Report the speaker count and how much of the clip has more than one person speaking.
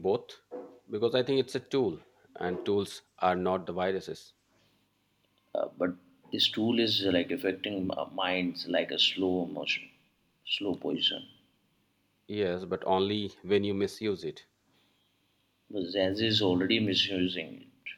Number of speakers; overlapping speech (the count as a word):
two, no overlap